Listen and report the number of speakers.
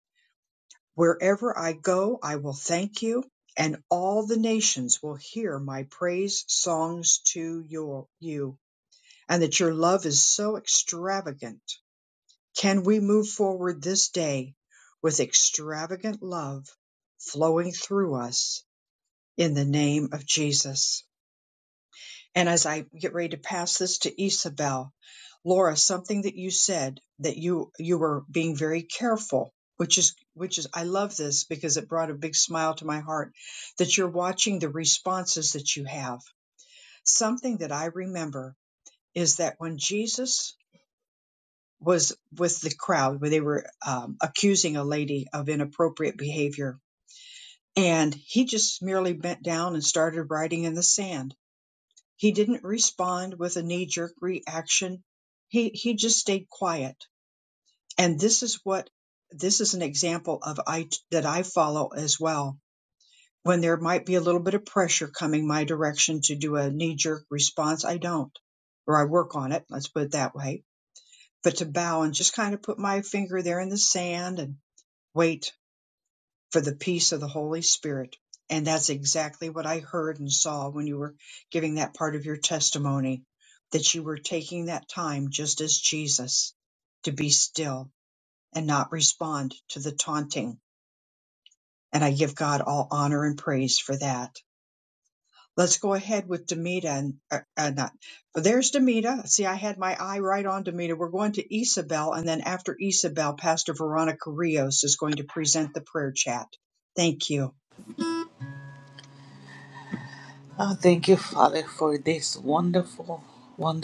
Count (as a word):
two